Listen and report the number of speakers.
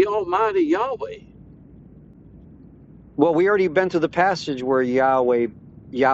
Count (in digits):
2